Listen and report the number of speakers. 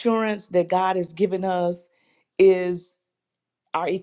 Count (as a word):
one